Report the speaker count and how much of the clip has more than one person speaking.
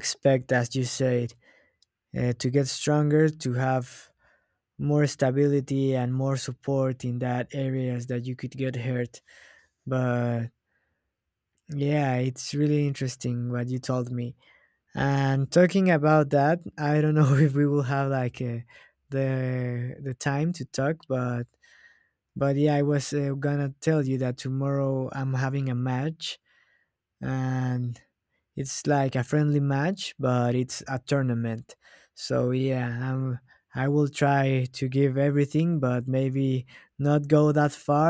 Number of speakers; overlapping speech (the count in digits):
1, no overlap